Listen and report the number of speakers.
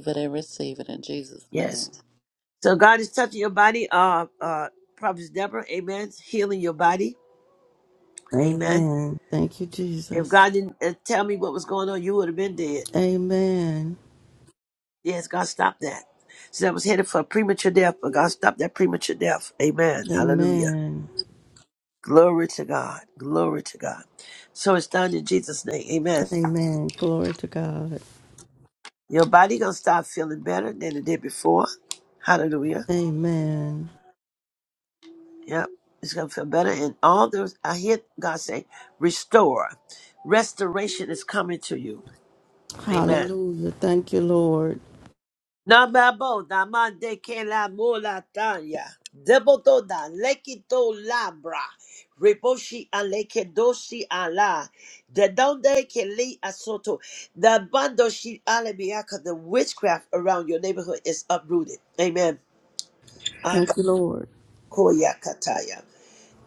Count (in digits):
3